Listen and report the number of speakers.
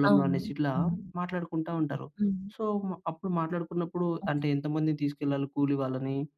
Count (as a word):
two